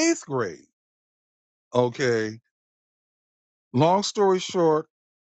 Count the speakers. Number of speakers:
1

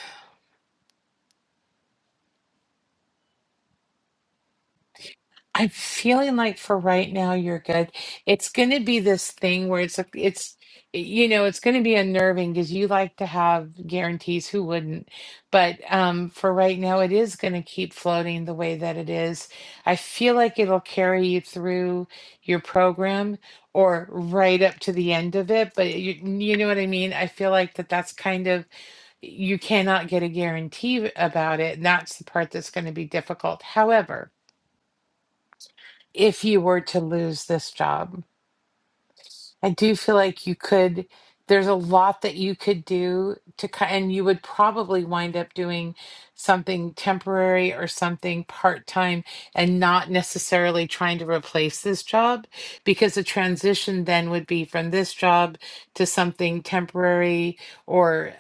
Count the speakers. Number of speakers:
1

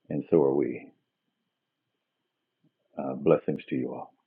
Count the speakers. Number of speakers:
1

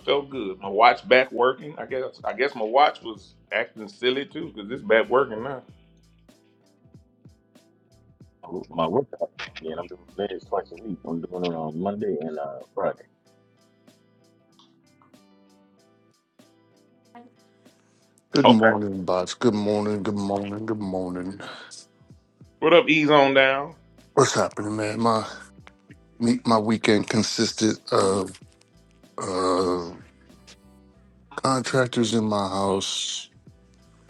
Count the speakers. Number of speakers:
3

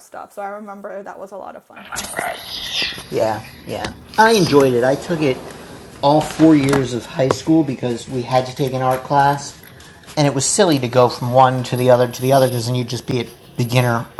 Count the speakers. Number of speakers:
2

